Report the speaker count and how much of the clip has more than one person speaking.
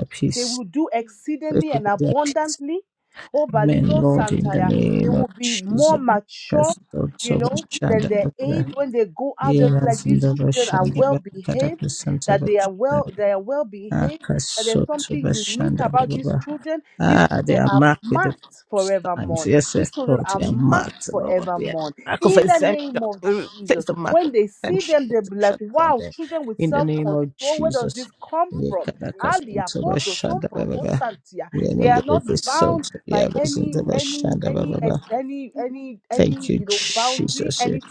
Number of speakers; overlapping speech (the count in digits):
2, about 71%